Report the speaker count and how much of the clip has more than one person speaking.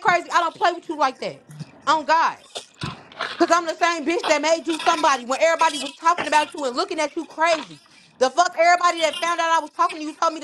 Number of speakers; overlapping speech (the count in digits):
1, no overlap